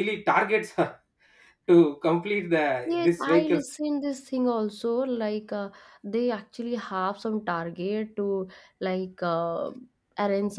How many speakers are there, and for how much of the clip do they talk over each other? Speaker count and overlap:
2, about 8%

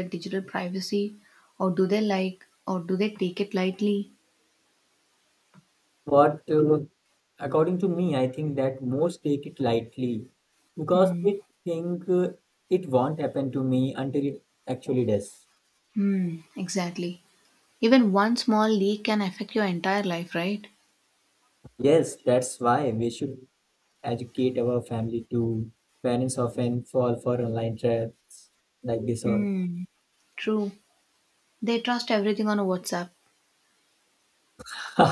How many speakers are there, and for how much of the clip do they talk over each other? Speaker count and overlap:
2, about 2%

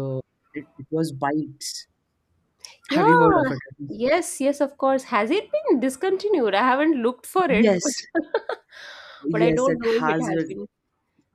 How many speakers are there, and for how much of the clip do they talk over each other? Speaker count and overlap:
2, about 20%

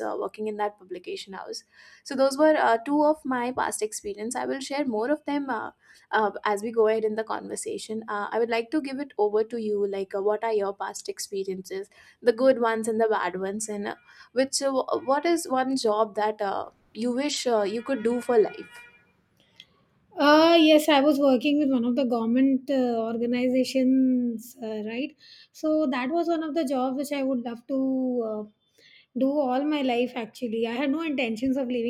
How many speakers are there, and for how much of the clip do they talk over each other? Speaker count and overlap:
2, no overlap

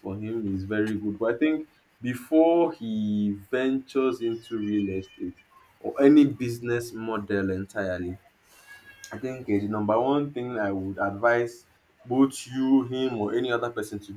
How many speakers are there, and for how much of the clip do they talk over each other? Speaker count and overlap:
1, no overlap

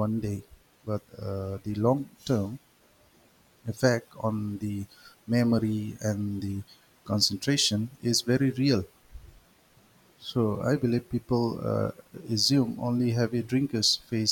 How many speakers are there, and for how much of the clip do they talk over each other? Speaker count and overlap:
1, no overlap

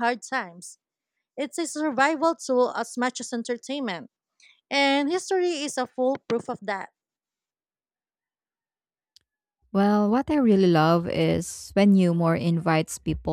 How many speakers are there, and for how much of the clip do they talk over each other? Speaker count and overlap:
2, no overlap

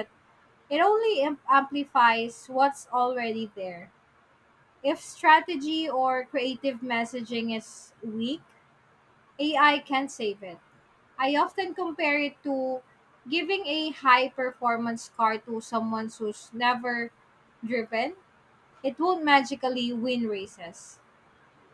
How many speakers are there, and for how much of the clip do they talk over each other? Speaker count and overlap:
1, no overlap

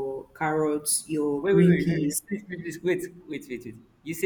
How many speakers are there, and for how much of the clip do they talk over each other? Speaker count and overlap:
2, about 17%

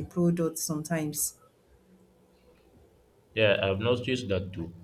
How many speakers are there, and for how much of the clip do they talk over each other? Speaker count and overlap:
2, no overlap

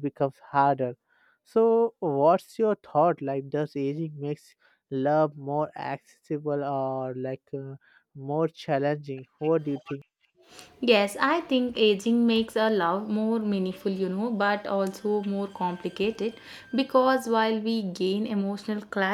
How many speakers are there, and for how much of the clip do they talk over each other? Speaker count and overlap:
2, no overlap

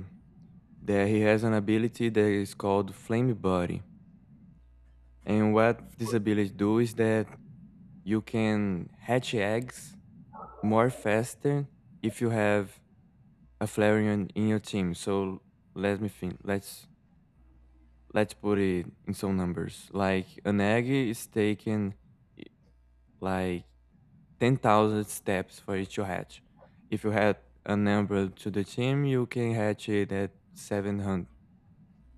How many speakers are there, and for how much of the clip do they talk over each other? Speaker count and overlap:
1, no overlap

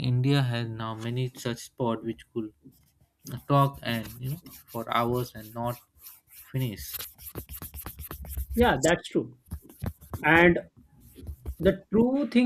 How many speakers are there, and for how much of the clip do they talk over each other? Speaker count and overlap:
2, no overlap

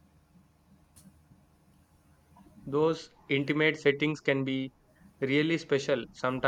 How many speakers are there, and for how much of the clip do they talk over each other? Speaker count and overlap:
1, no overlap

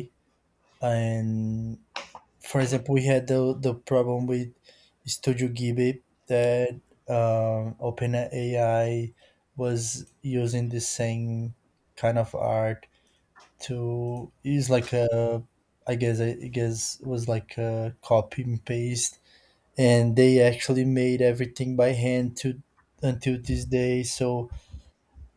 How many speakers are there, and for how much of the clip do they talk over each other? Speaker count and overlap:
1, no overlap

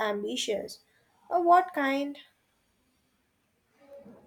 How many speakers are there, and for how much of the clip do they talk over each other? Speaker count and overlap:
1, no overlap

